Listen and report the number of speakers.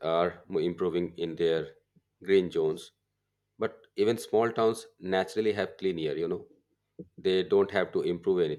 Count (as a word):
one